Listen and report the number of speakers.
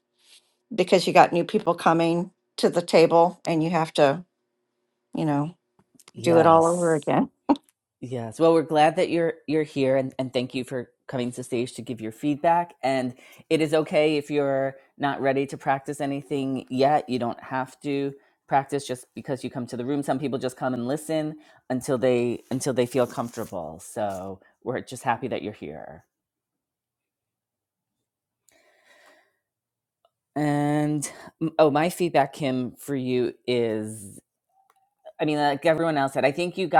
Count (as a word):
two